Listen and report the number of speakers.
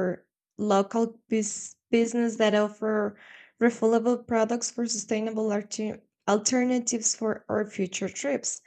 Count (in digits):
1